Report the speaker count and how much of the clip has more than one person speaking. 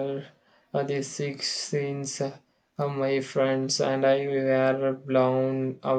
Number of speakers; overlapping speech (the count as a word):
one, no overlap